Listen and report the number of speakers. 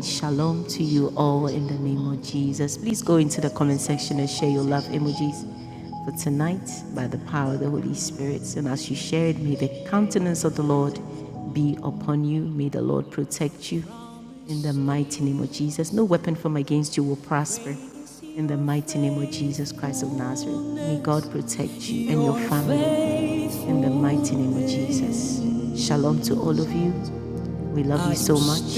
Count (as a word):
one